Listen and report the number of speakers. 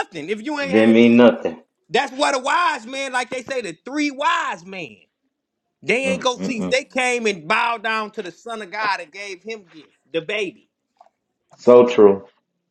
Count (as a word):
two